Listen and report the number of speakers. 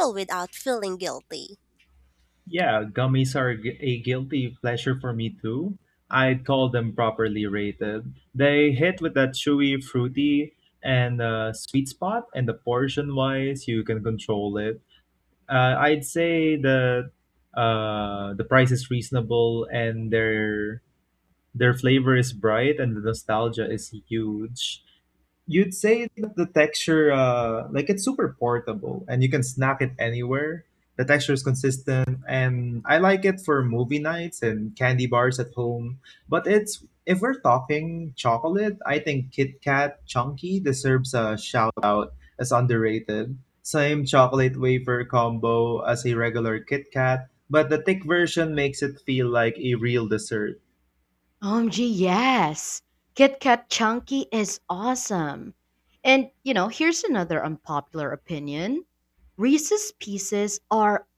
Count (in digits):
3